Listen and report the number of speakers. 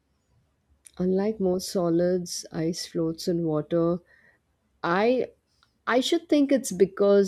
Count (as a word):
one